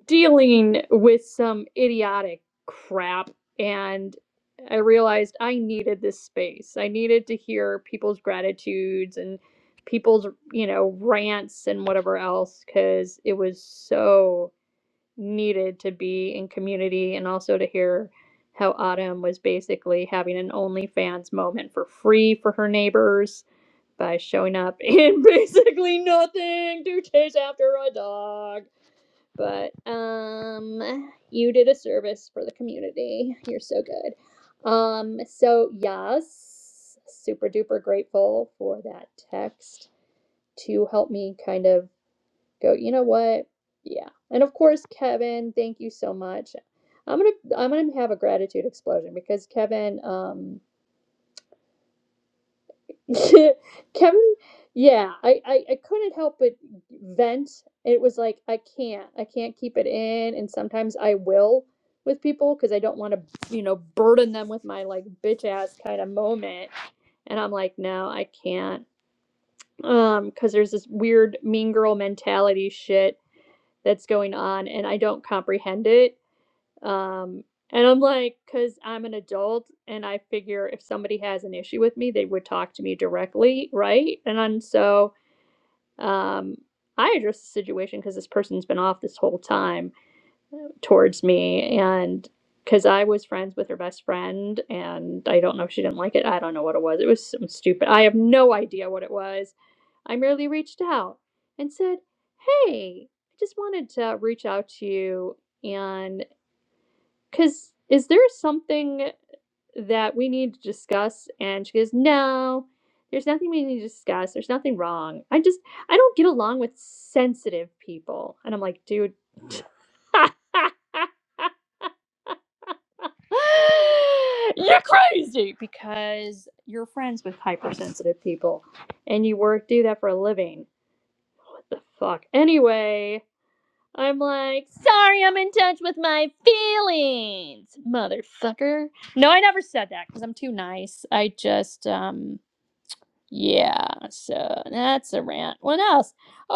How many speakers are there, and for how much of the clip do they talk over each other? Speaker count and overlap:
one, no overlap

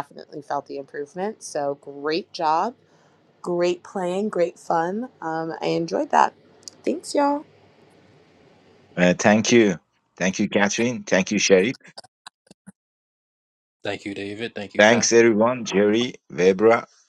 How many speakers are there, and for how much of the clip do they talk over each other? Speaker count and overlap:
three, about 2%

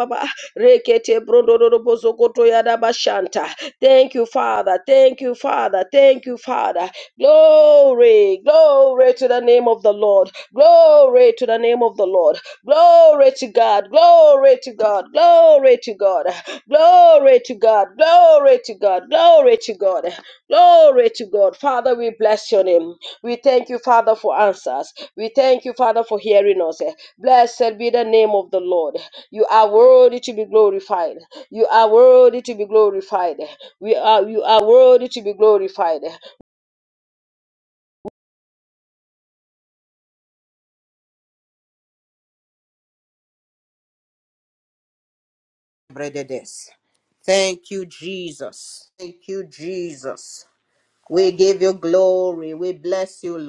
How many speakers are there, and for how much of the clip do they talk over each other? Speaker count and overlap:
two, no overlap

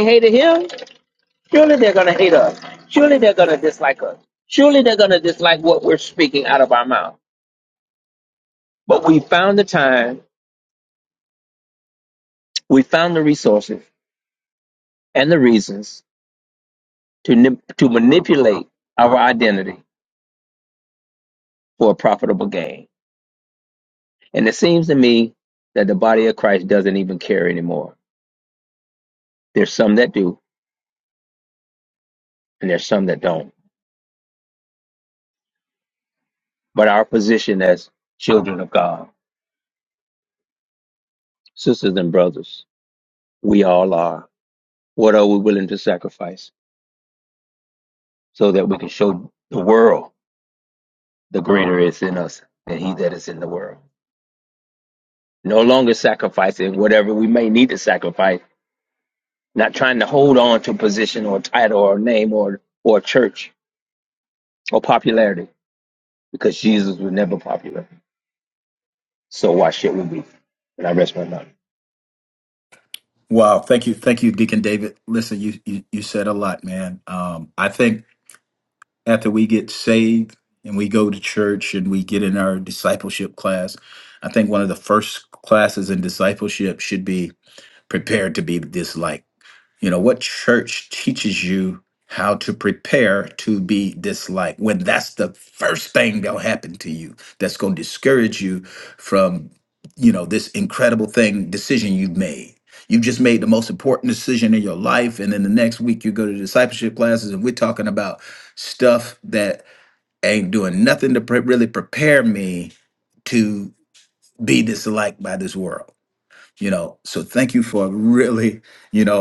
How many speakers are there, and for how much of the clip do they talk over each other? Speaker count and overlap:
two, no overlap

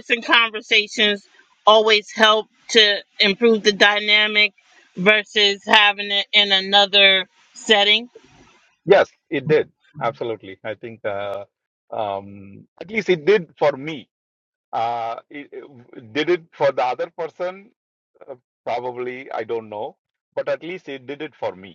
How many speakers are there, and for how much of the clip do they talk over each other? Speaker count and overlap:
two, no overlap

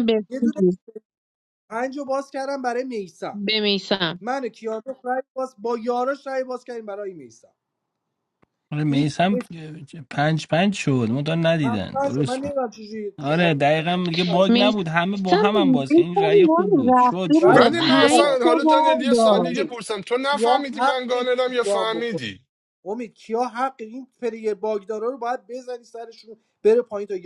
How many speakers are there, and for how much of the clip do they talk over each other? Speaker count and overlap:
four, about 25%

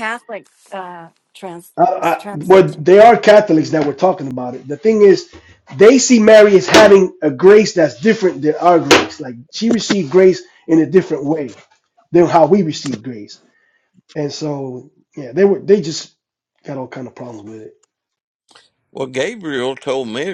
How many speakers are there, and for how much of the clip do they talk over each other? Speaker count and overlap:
three, about 3%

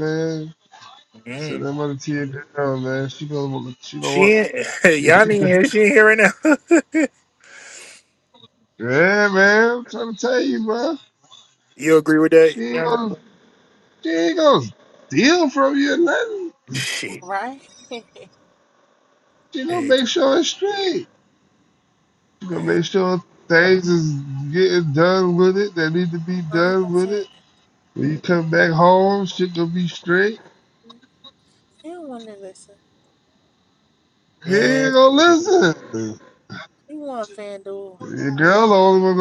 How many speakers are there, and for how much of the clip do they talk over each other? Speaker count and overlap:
three, about 8%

